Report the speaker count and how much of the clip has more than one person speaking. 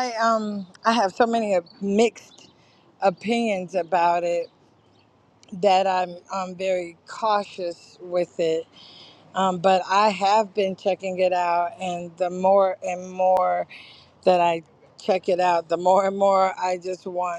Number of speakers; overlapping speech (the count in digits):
1, no overlap